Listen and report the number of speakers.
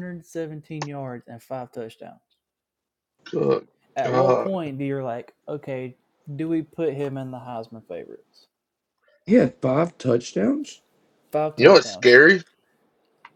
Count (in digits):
3